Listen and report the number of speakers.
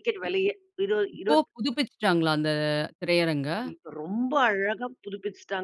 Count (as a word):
two